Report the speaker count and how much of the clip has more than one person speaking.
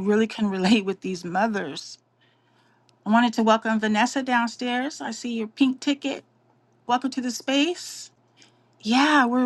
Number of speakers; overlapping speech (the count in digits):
1, no overlap